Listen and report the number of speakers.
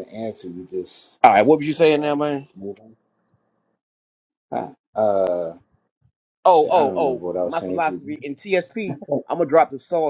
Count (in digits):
2